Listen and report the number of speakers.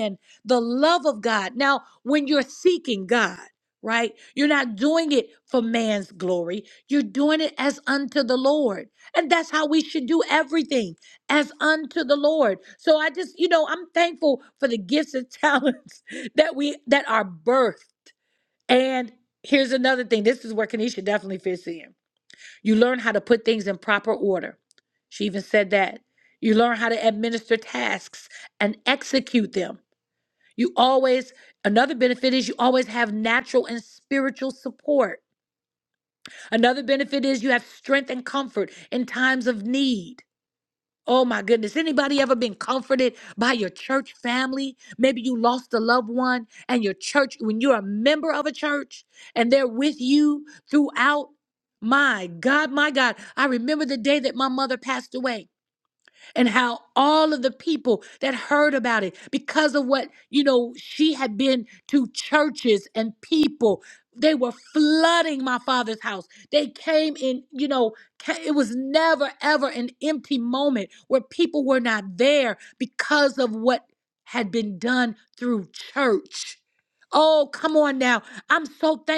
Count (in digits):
1